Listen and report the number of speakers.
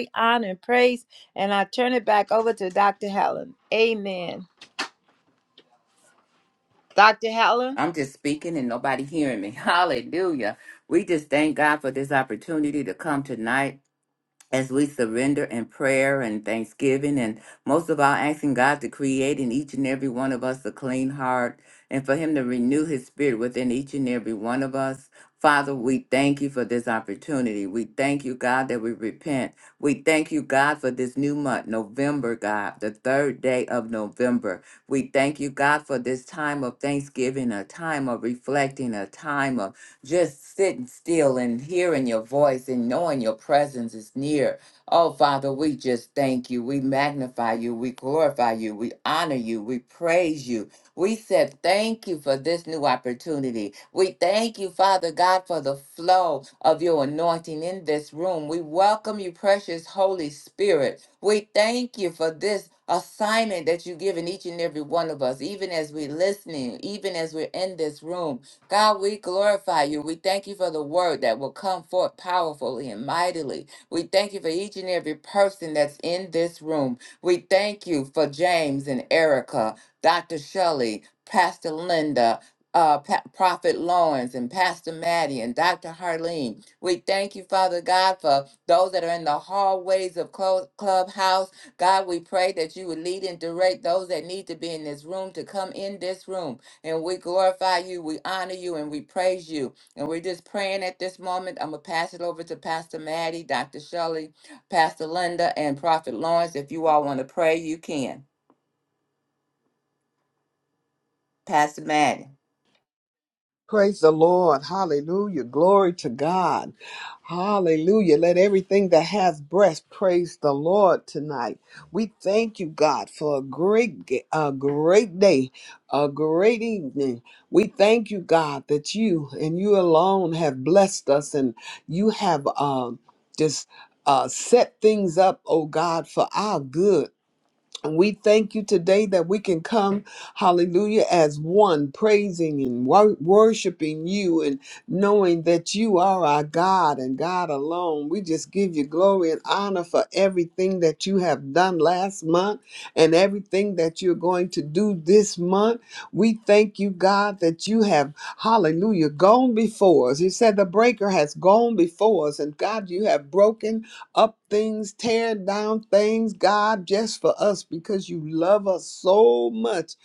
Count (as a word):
three